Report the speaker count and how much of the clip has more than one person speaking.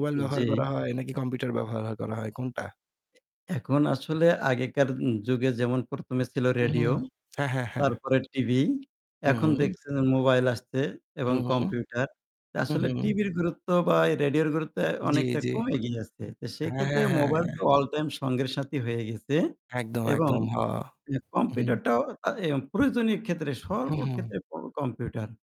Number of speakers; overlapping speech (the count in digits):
2, about 18%